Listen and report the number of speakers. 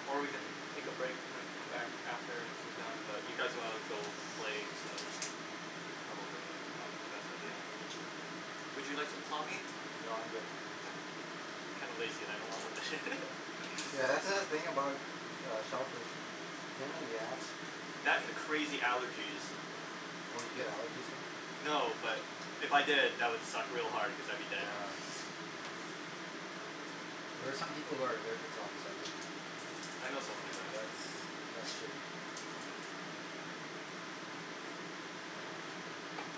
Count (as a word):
two